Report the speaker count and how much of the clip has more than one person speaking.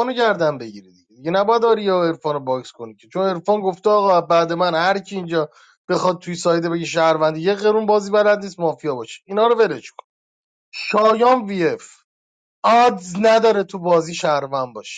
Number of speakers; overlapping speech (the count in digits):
1, no overlap